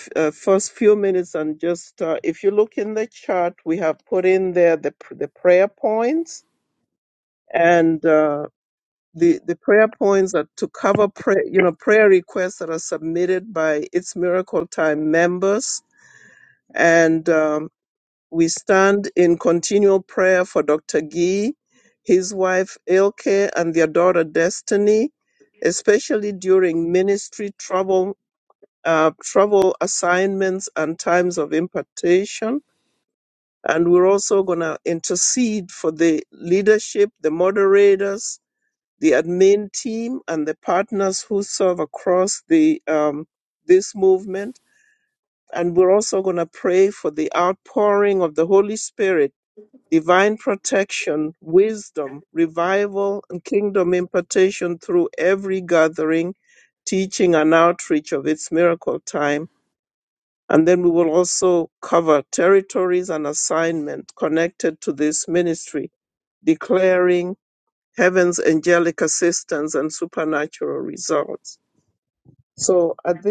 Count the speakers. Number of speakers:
1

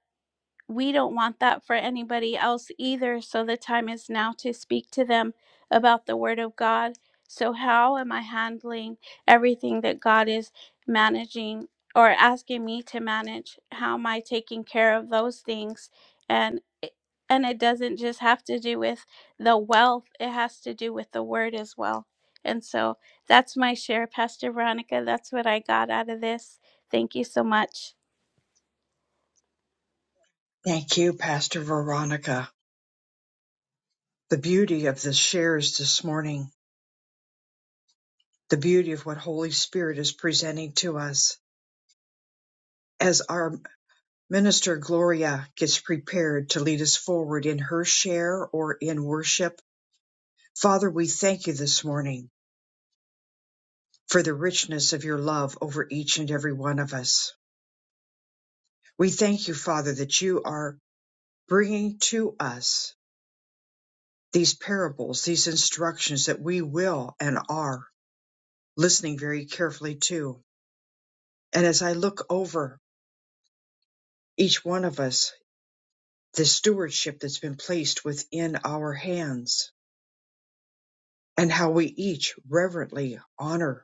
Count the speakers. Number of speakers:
2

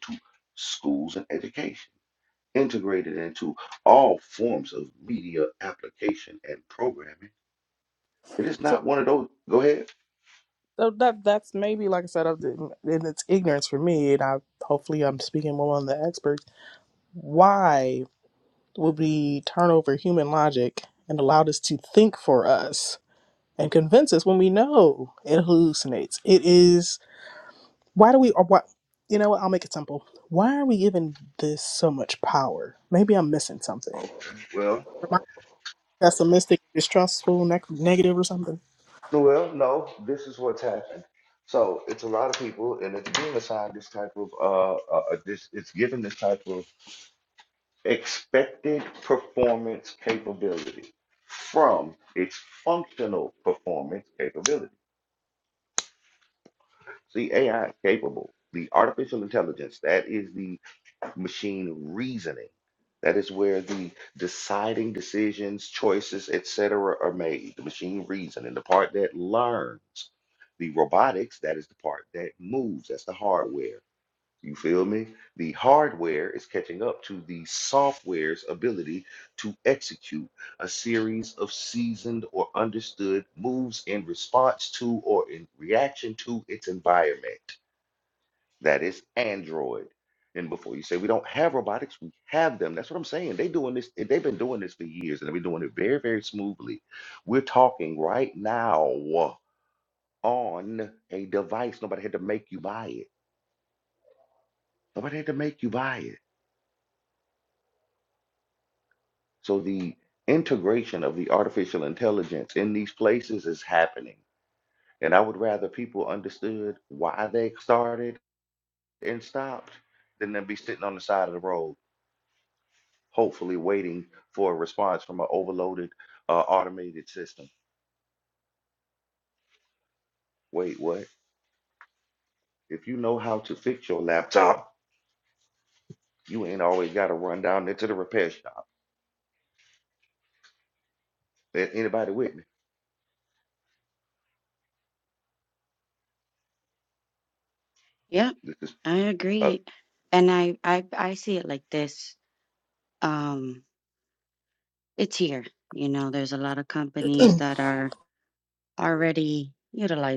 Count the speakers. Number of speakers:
3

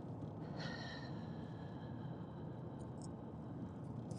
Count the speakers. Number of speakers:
0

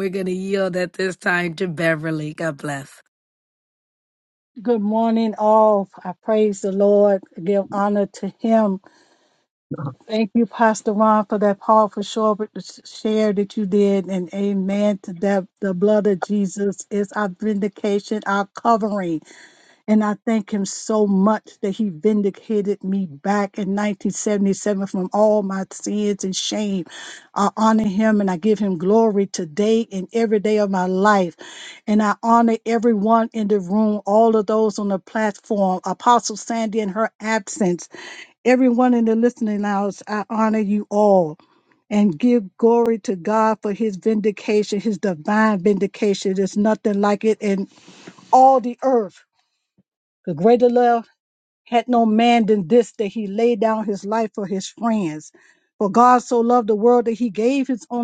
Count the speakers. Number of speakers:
2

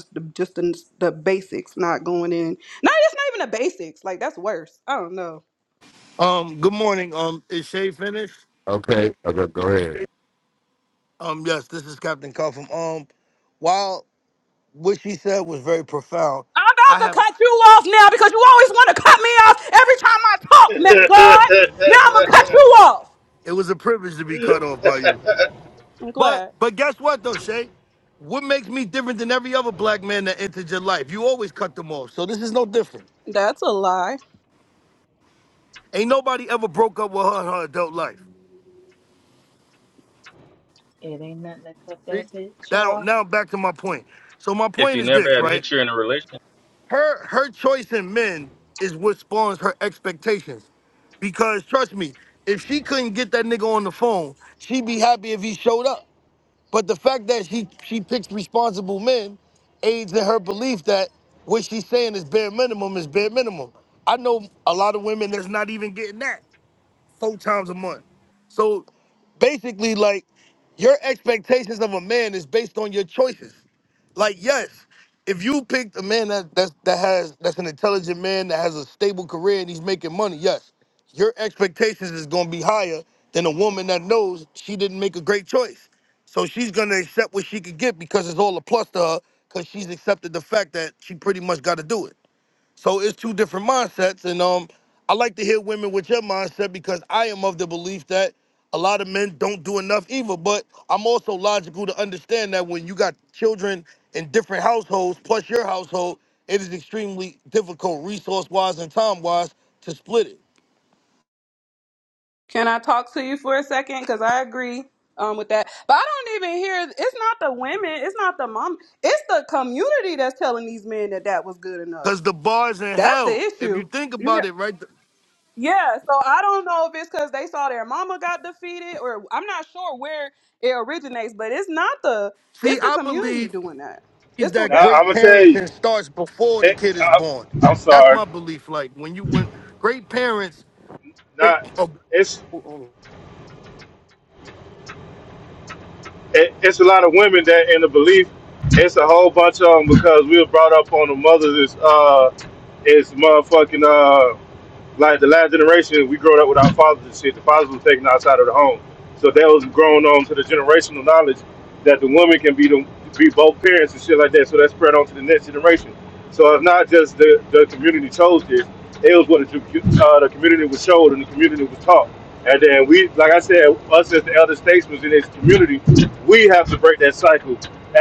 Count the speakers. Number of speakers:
6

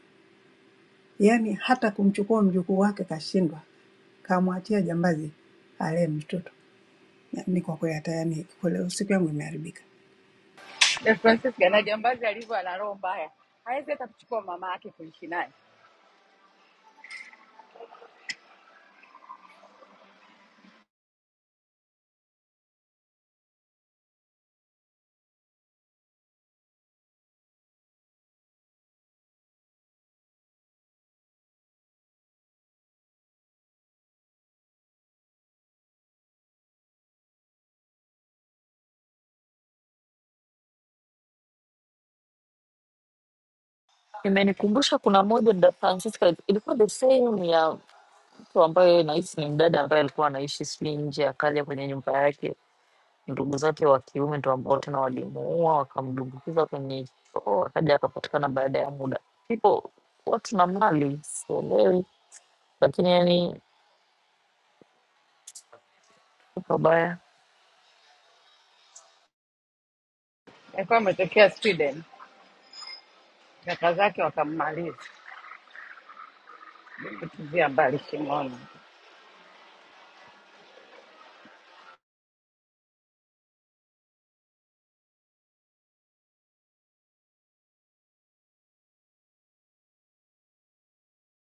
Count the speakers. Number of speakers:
3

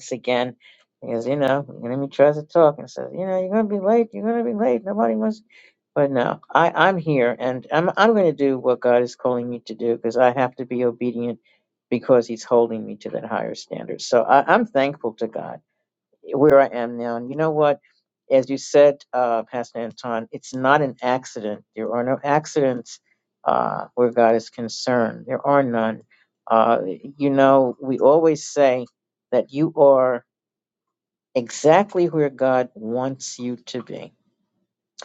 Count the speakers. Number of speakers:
1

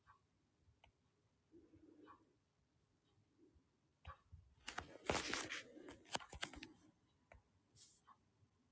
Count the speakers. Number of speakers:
0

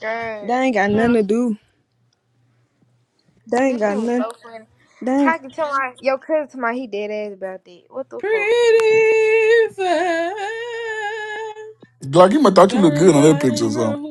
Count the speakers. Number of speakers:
4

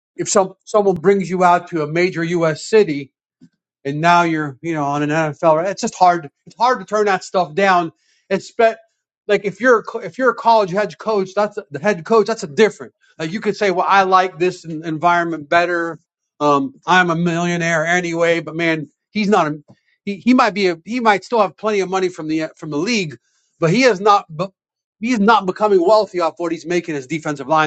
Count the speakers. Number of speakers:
1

